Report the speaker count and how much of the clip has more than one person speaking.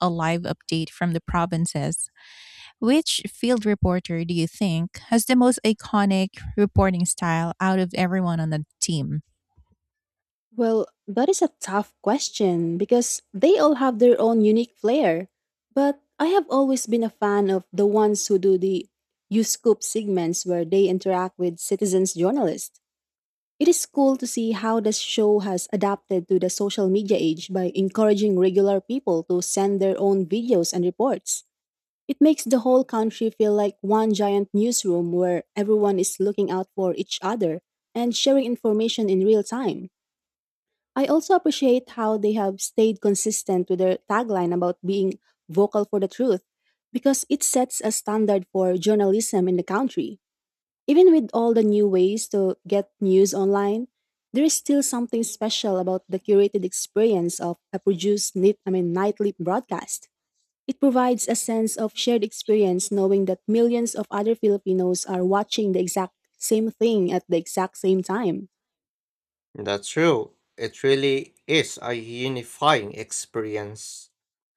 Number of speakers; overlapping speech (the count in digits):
3, no overlap